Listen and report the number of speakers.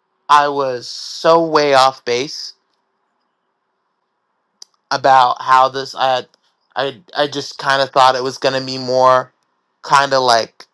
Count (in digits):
1